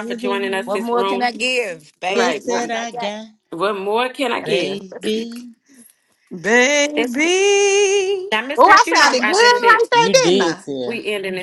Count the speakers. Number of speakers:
4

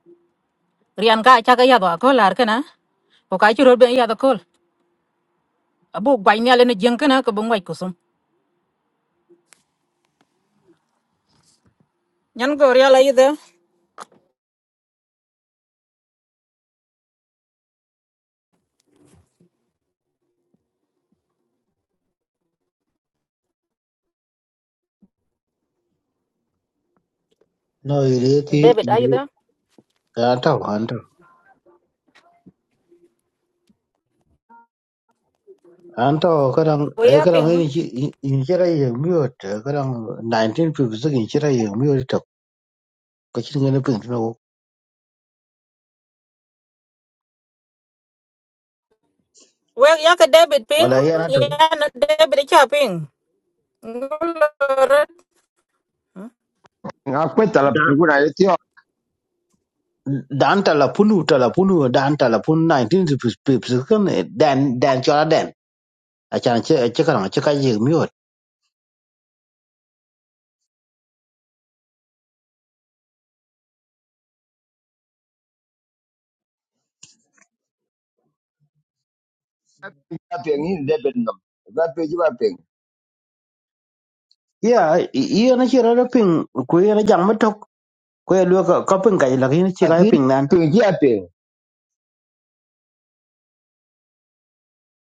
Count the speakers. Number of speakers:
3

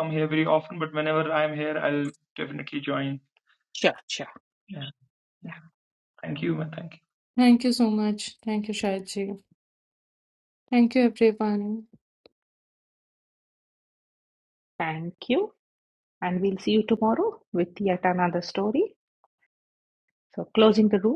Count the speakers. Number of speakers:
3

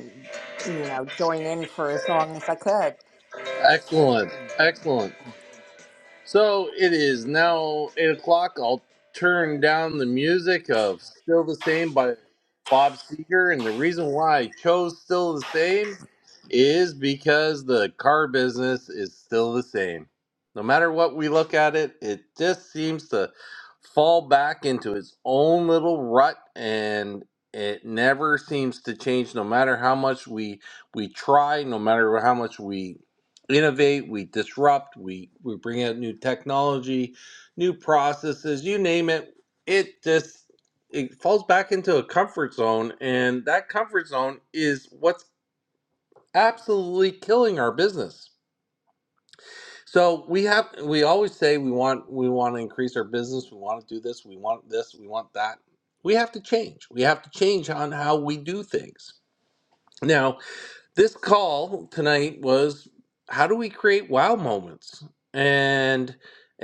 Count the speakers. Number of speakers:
2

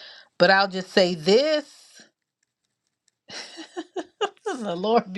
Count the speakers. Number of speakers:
1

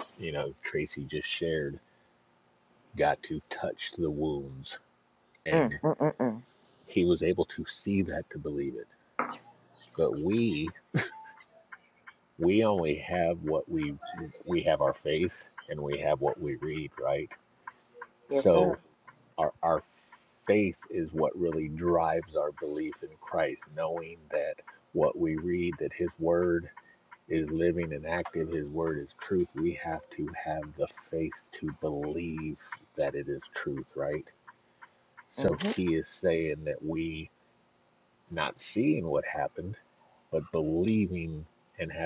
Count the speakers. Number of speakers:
2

